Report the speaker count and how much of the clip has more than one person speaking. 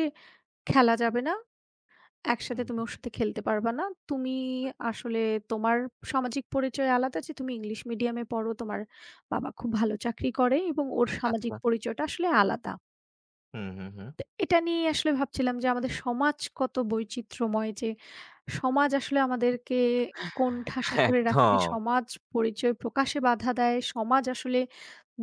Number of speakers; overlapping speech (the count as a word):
two, about 4%